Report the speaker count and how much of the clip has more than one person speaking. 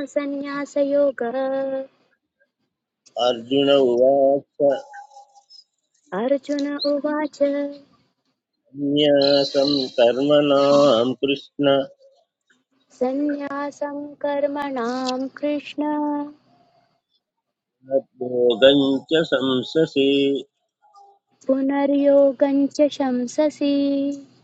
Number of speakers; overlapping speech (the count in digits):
2, no overlap